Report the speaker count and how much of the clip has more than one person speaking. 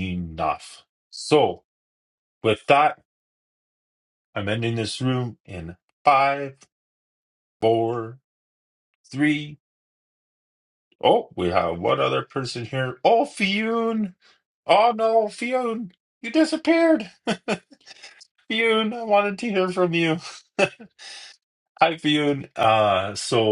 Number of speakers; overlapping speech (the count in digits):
1, no overlap